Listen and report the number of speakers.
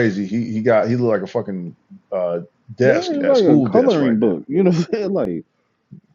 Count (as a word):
two